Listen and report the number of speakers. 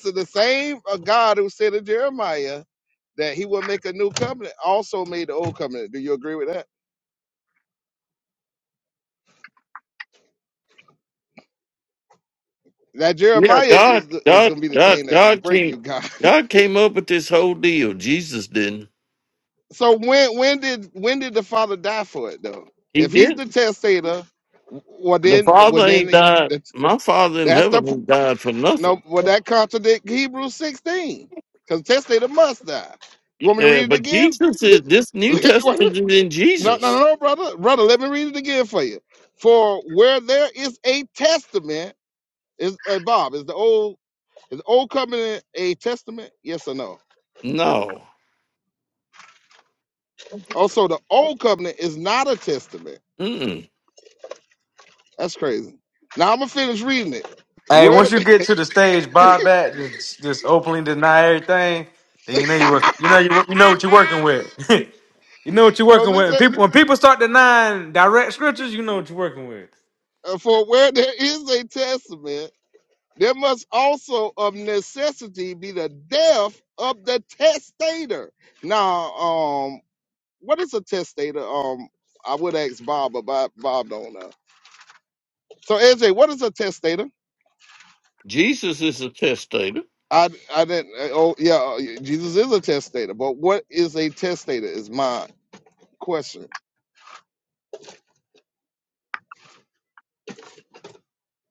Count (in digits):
3